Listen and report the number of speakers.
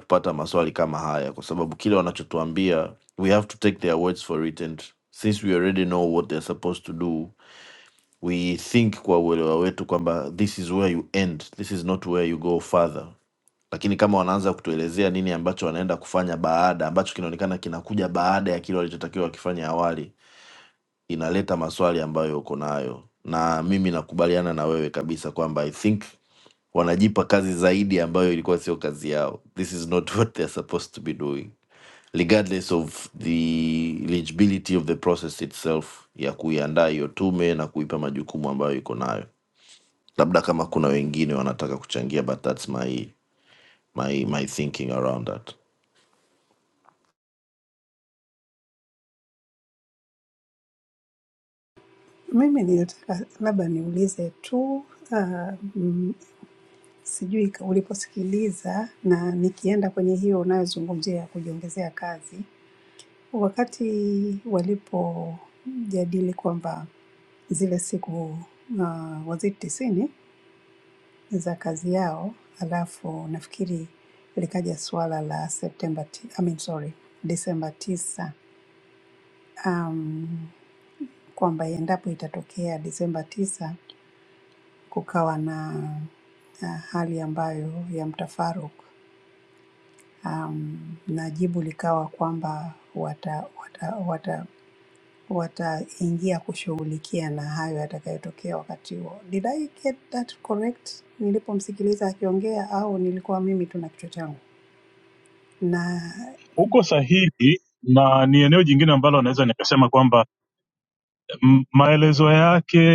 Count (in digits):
3